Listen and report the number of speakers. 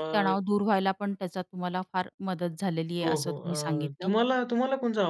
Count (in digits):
2